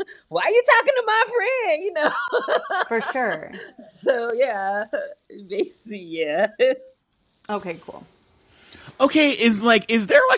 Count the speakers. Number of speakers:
three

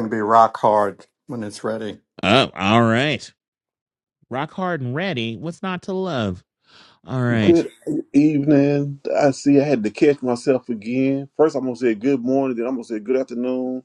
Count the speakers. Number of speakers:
three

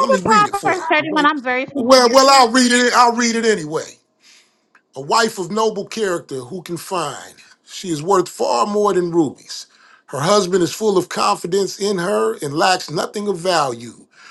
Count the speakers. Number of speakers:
two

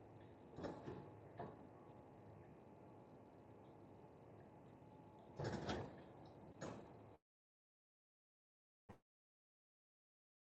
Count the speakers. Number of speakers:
zero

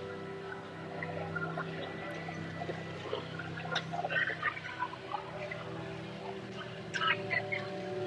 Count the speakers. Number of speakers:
zero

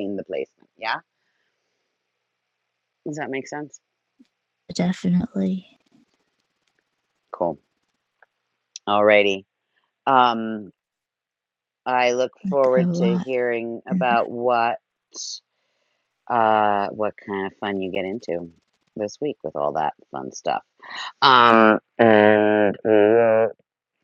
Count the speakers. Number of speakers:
two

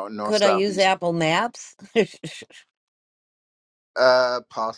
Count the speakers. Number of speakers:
two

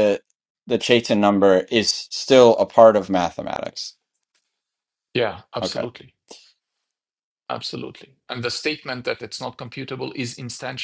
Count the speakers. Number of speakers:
two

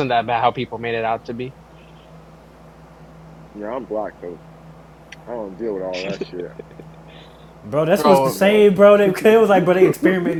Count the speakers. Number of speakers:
three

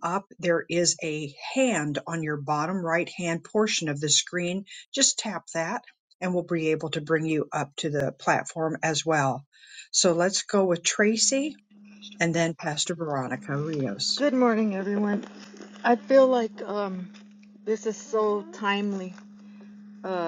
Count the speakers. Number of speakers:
two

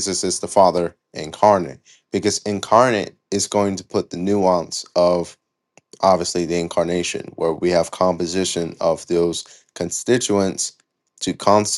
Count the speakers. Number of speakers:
one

